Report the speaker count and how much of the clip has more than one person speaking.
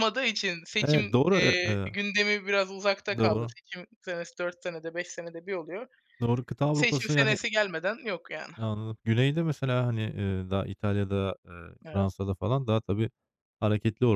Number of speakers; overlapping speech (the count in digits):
2, about 15%